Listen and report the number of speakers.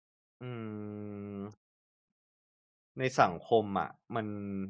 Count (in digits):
1